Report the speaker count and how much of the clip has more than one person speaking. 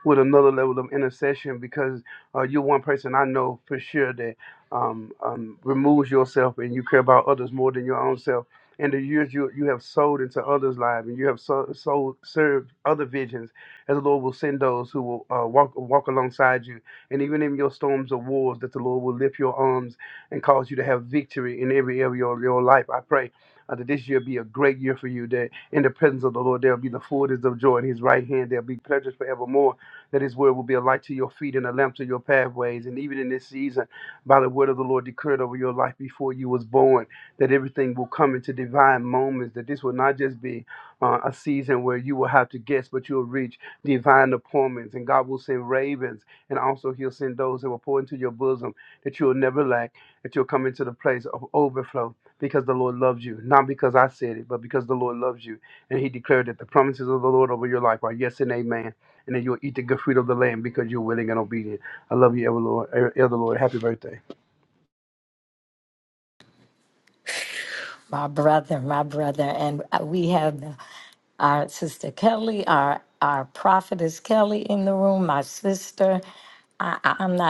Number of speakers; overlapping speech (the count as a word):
two, no overlap